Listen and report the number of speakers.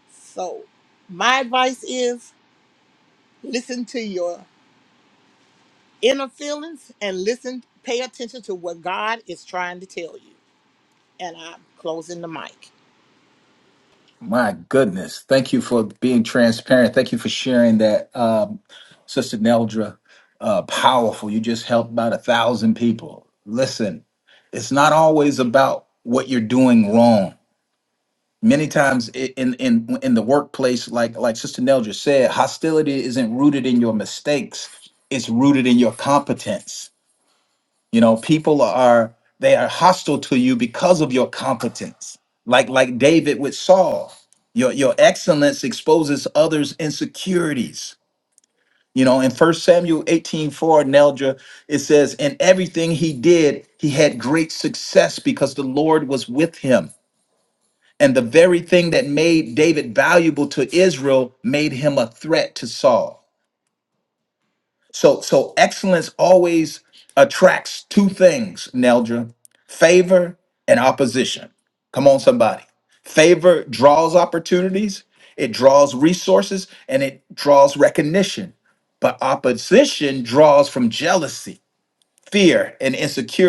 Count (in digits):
2